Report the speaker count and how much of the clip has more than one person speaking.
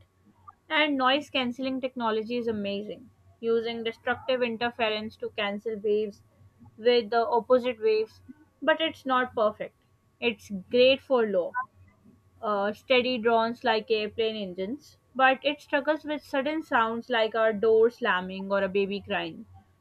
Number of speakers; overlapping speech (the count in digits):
1, no overlap